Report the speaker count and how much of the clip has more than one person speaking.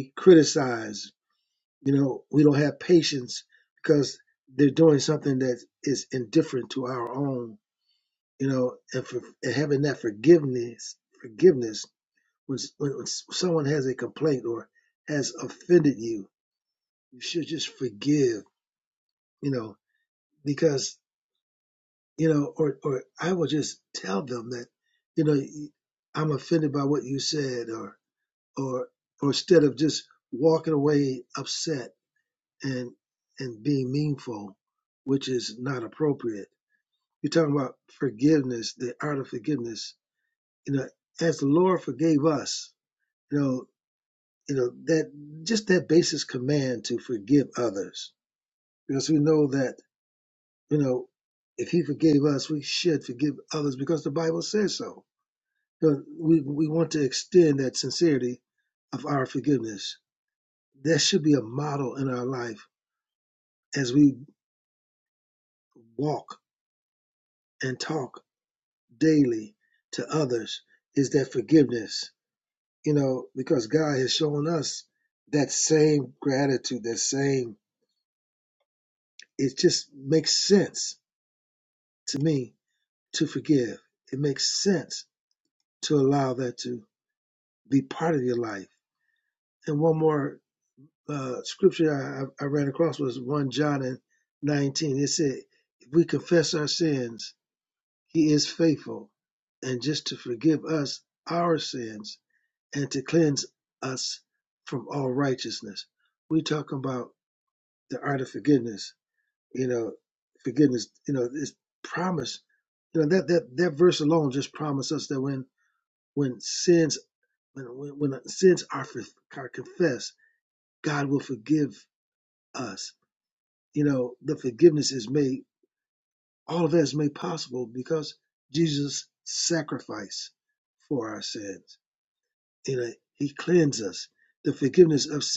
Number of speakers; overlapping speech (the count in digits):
1, no overlap